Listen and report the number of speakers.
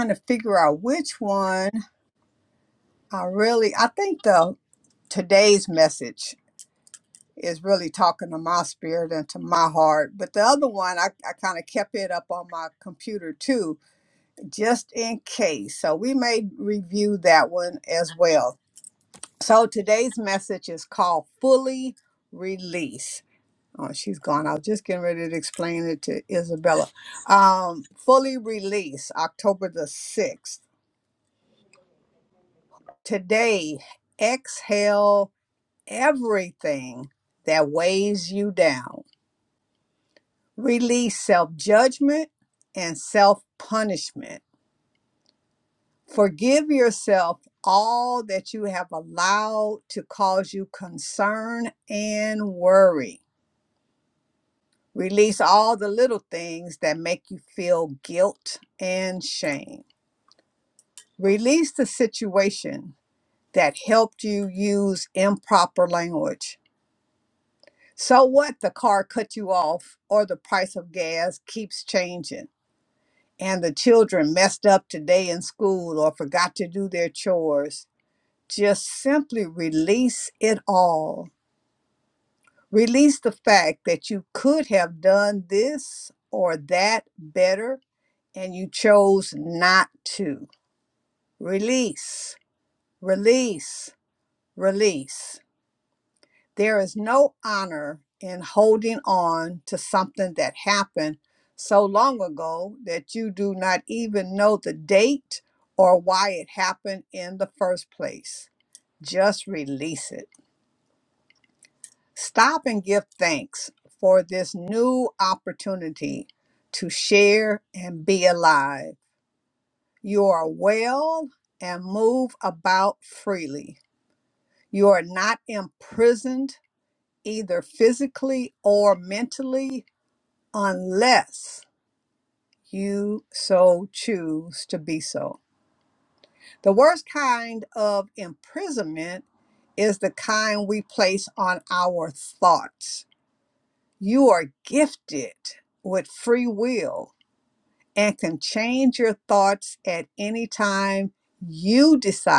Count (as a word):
one